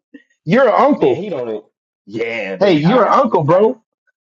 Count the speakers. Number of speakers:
2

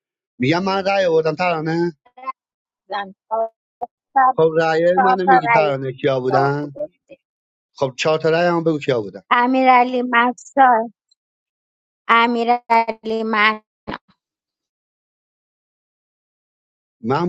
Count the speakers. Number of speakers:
2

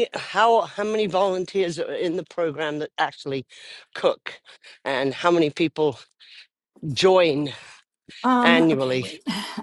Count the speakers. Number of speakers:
2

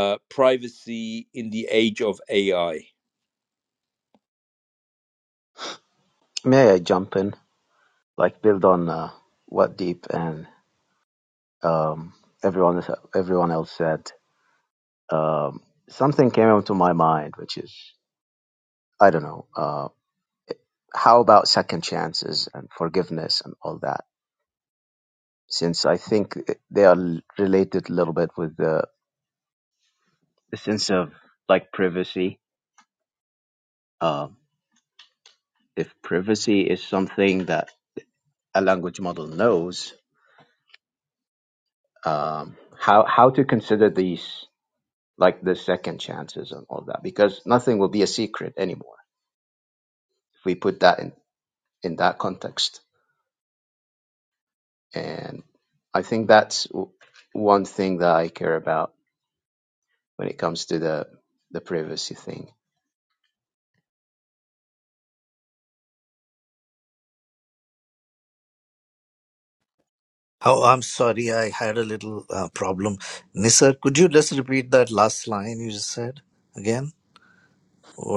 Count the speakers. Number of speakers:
3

